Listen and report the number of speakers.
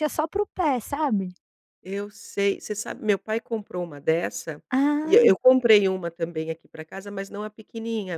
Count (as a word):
two